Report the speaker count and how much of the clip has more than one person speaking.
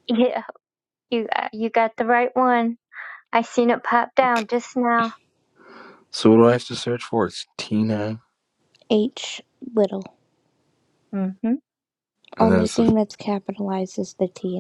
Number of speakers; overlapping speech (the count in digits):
3, about 4%